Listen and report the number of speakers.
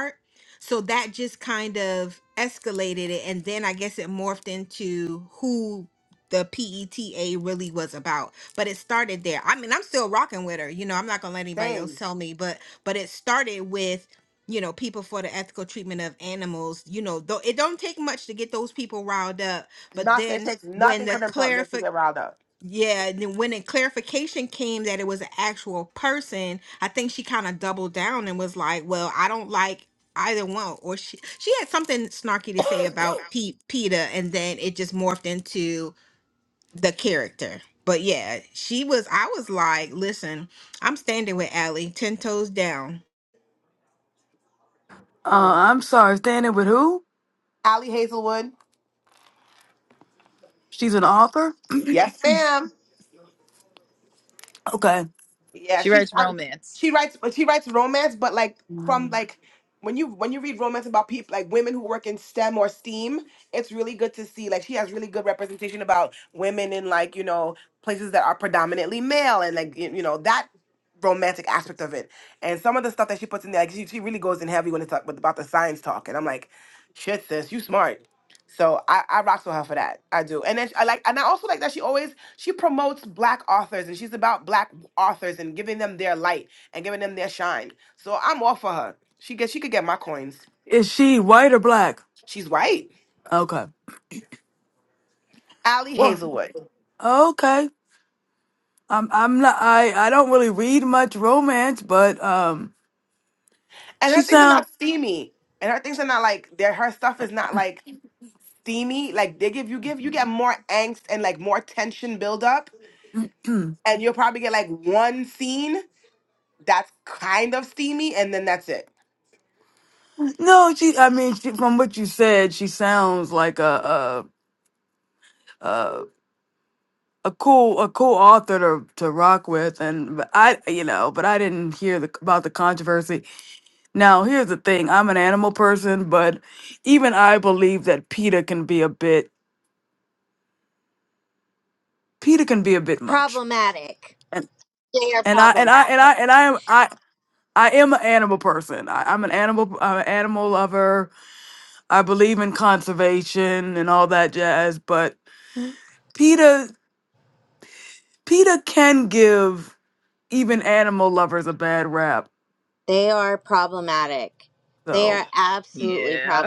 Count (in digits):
5